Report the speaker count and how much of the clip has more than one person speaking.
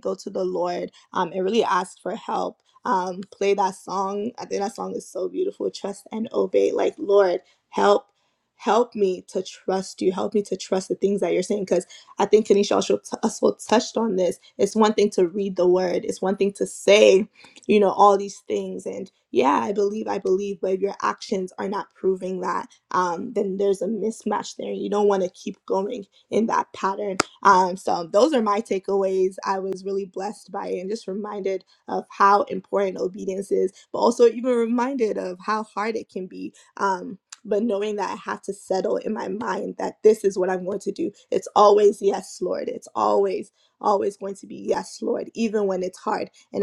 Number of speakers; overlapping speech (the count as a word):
one, no overlap